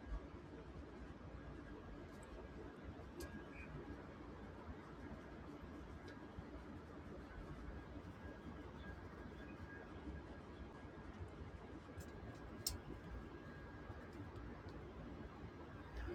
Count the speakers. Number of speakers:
zero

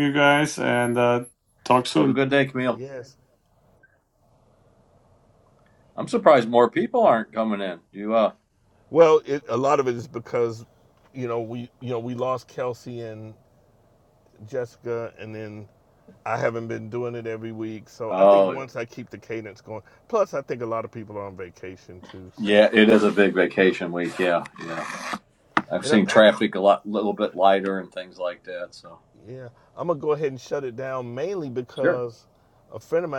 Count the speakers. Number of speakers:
three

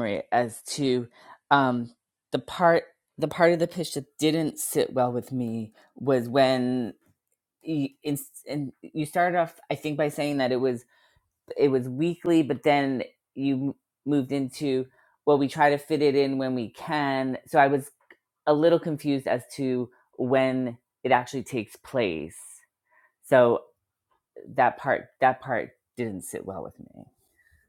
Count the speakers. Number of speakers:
one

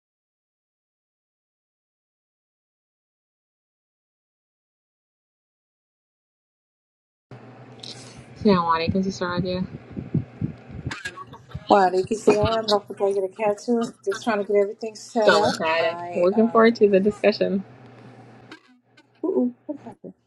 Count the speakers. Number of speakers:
two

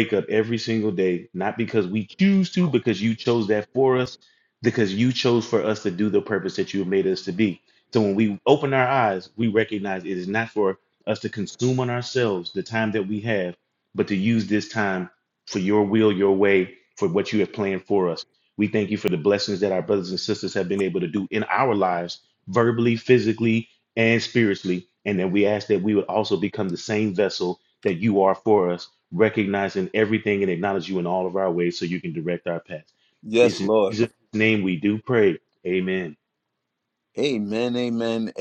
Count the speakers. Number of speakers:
two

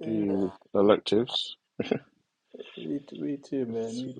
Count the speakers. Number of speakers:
two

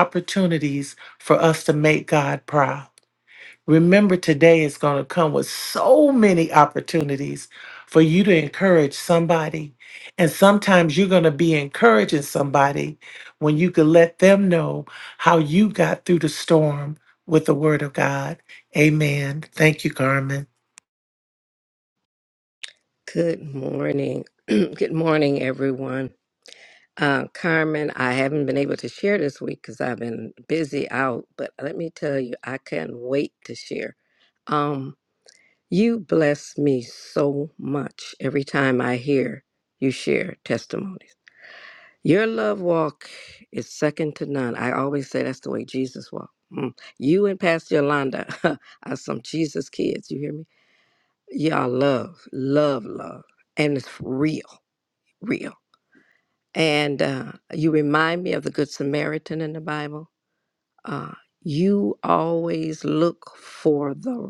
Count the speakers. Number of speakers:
two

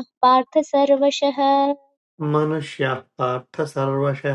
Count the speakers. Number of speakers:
two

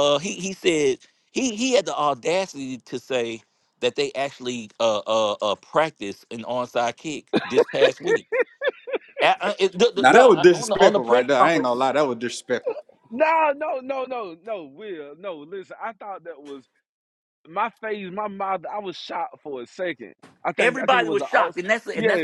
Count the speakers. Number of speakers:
three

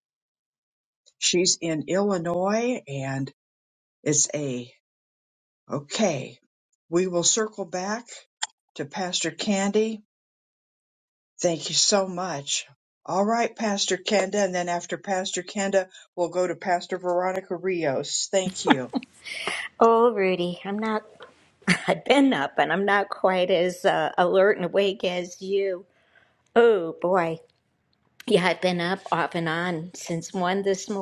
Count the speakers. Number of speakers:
two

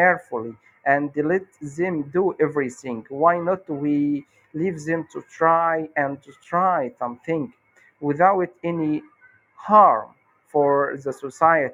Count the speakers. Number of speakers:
one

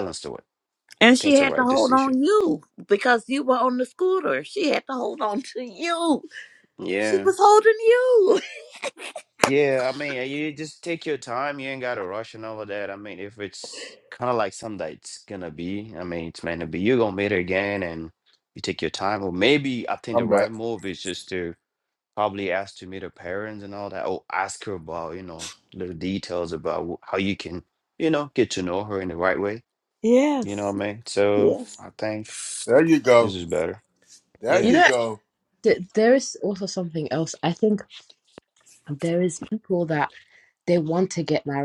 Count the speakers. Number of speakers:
four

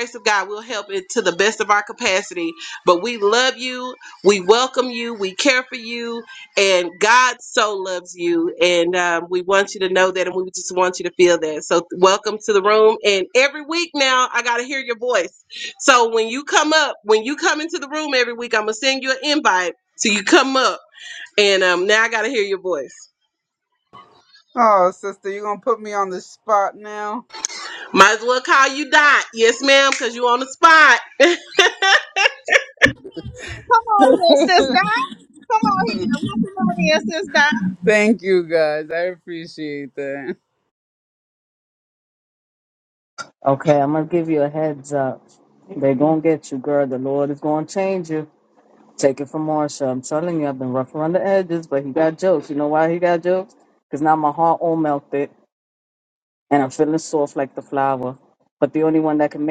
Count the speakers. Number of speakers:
four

